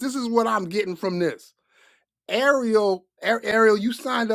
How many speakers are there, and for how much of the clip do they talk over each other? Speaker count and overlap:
1, no overlap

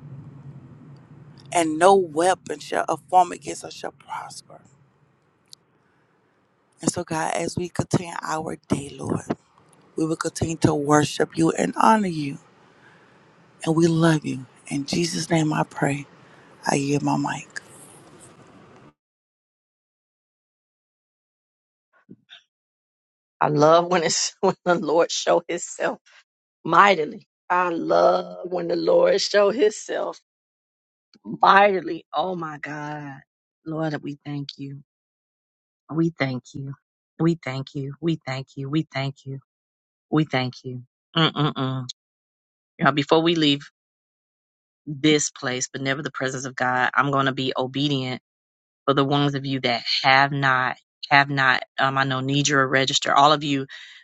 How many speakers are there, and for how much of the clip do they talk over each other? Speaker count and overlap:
2, no overlap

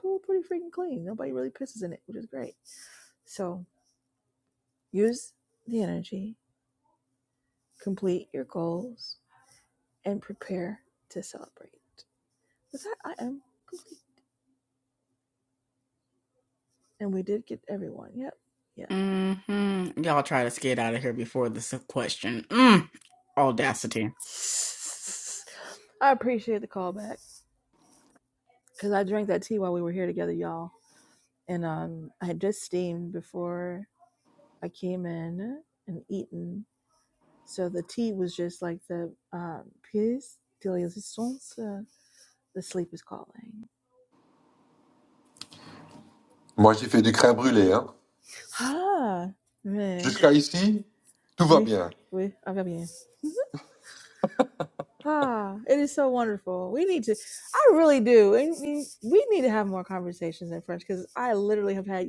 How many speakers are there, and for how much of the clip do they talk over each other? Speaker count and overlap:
3, about 1%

